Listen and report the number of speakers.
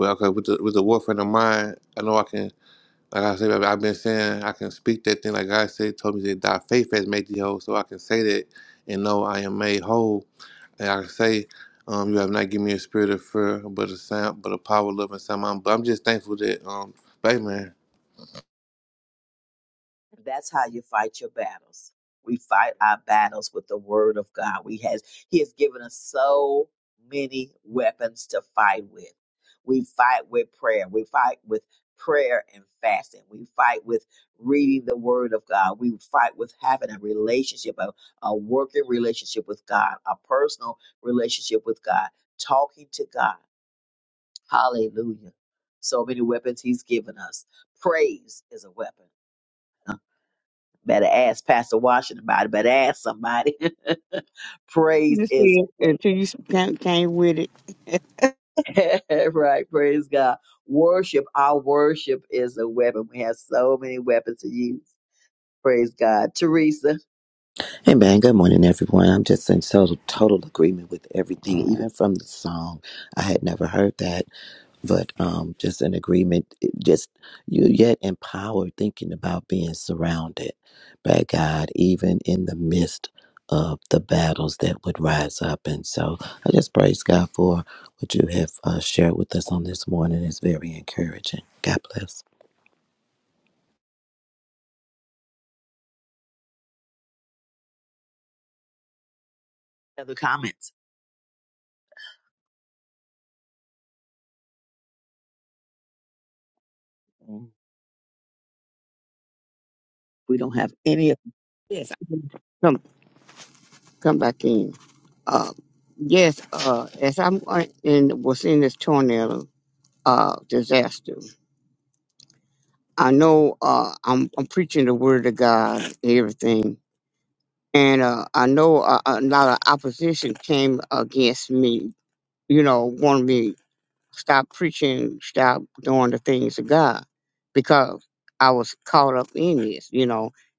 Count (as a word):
four